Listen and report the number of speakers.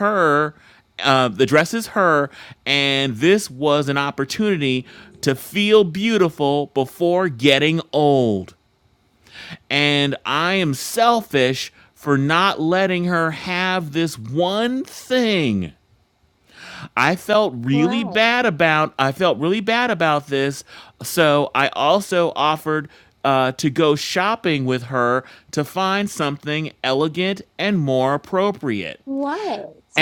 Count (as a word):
two